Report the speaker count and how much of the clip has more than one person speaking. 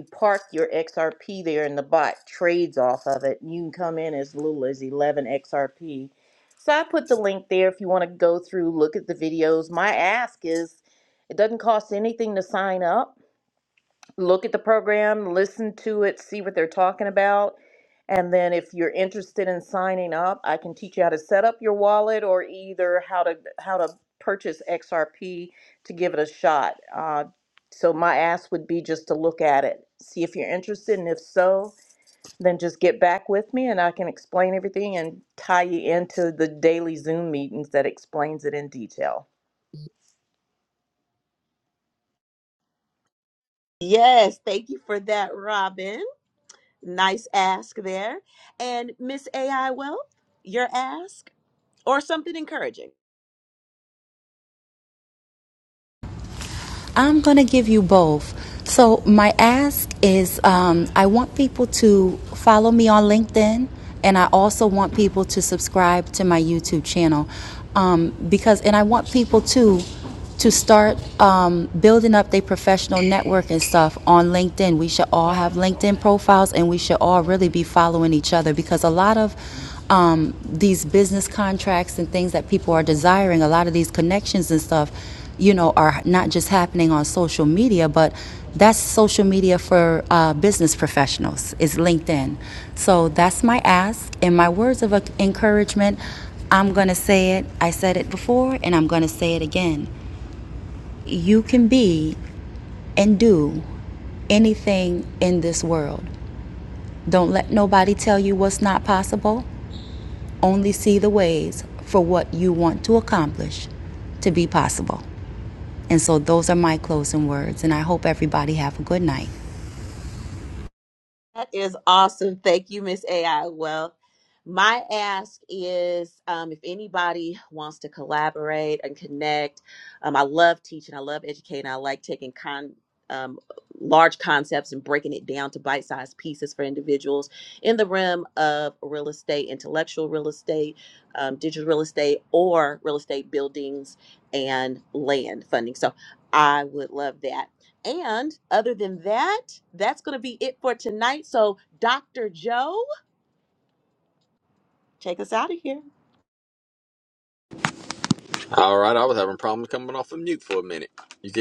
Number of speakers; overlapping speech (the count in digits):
4, no overlap